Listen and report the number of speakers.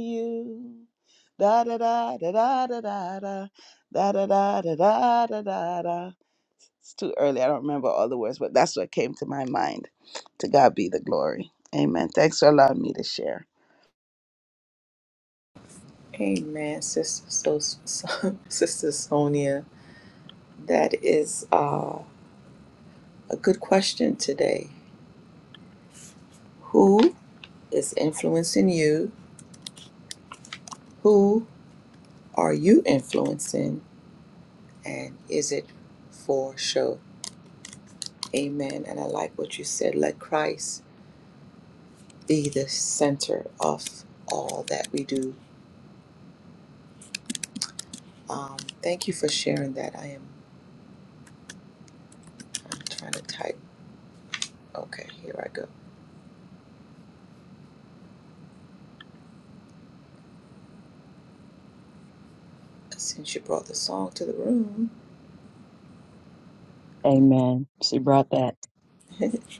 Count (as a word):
three